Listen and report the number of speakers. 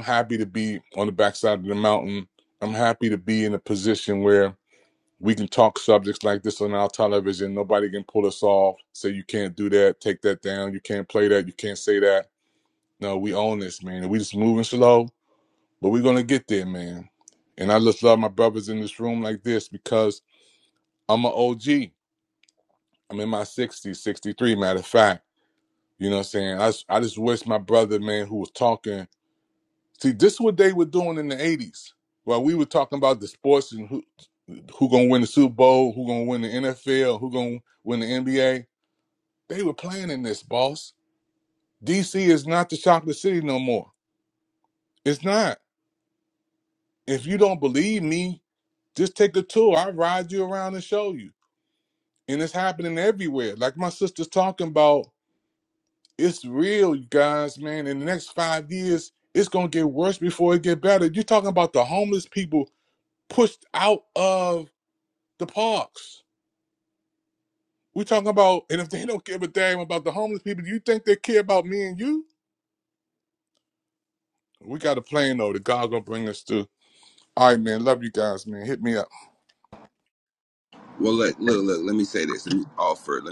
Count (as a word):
two